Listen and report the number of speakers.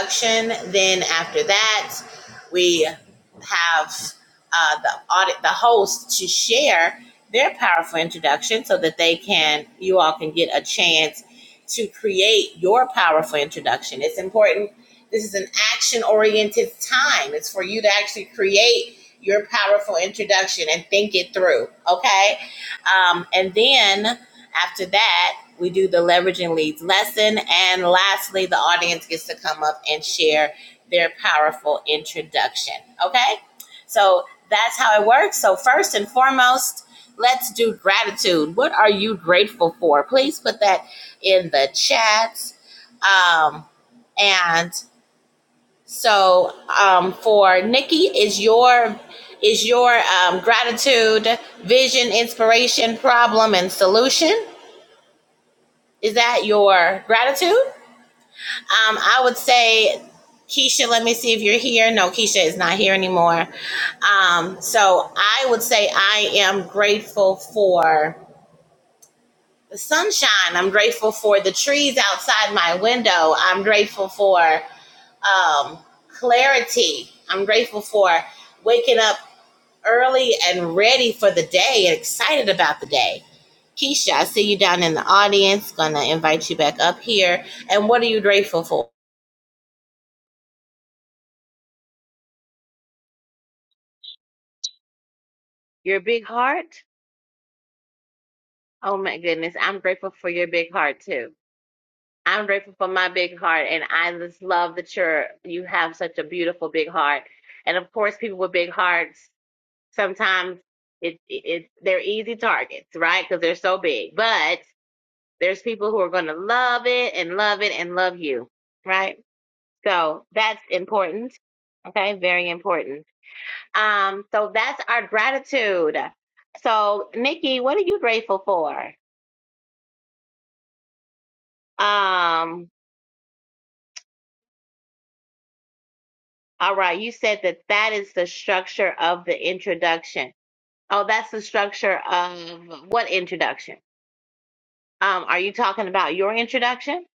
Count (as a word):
one